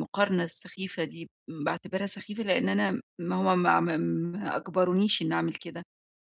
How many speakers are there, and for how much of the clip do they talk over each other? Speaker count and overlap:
1, no overlap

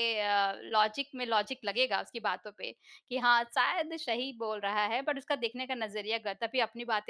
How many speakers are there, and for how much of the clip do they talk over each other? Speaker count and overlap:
1, no overlap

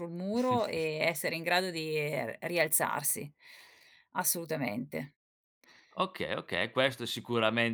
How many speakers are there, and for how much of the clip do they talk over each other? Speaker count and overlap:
2, no overlap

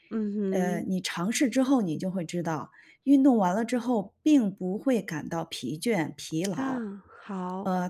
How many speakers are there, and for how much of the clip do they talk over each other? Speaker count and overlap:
2, about 5%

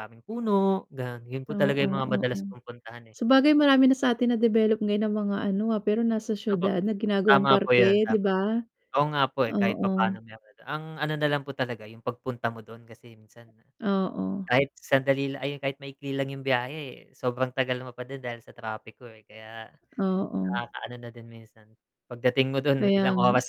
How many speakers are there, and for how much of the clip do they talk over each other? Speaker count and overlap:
2, about 13%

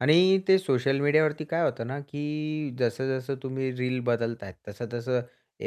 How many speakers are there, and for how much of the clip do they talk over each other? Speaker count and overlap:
1, no overlap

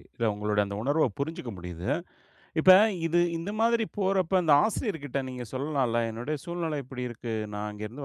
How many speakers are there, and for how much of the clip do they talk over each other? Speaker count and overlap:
1, no overlap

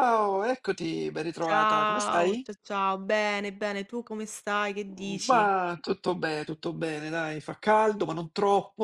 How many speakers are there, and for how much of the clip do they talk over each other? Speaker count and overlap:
2, about 17%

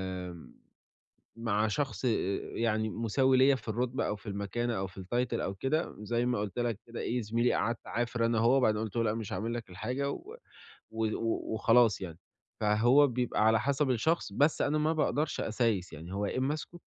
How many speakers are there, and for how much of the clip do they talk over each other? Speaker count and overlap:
1, no overlap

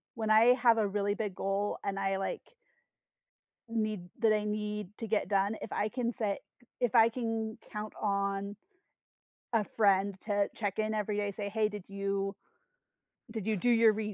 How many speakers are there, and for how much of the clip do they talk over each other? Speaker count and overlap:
1, no overlap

